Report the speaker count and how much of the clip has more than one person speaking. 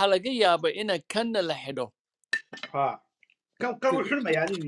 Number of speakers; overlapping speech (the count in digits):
2, about 2%